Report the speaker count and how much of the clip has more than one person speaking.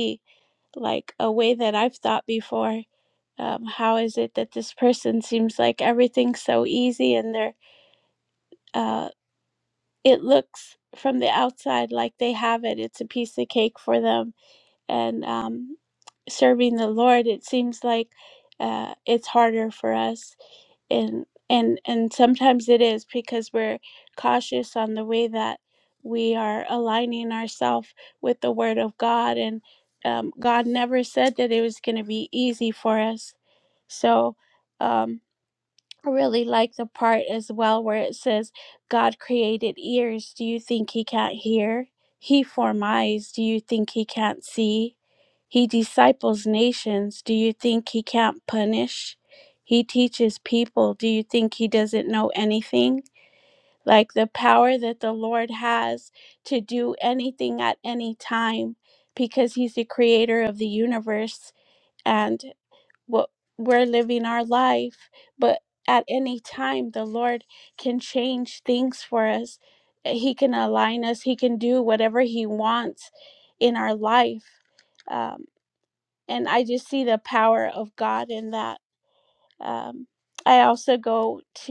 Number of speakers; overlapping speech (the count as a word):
one, no overlap